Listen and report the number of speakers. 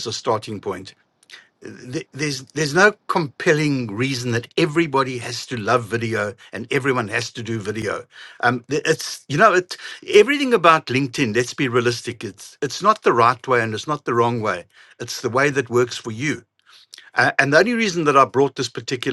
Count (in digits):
1